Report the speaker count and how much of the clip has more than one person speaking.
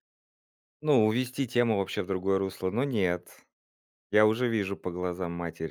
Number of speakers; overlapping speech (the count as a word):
one, no overlap